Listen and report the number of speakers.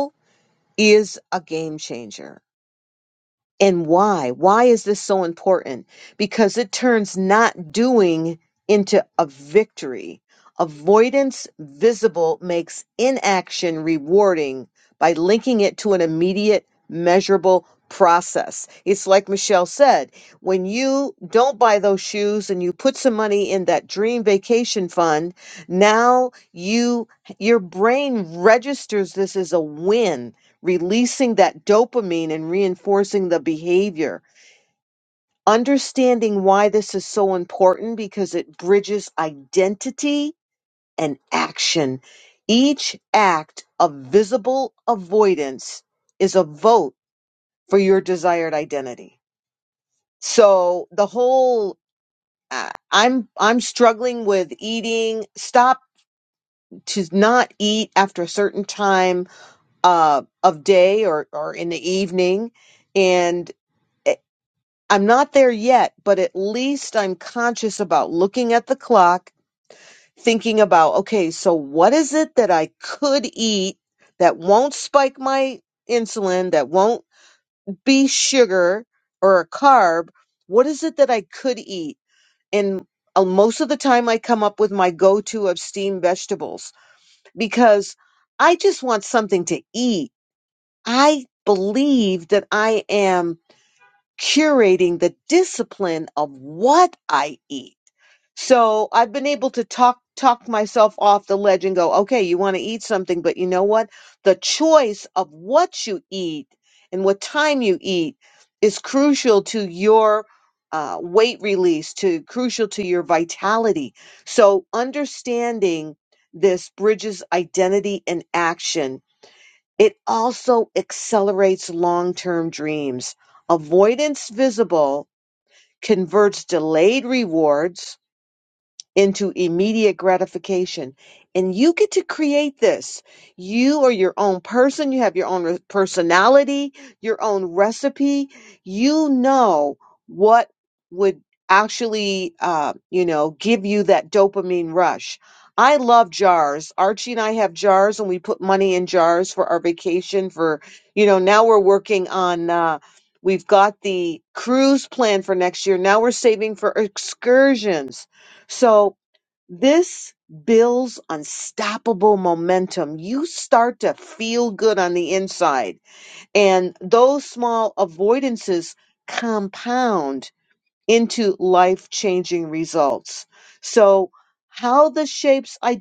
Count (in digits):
1